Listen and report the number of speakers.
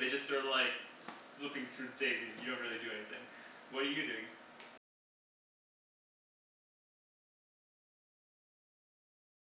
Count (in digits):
1